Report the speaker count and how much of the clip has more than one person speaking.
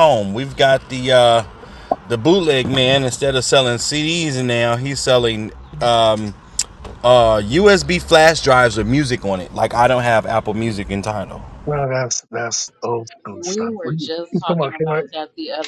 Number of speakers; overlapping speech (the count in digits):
3, about 11%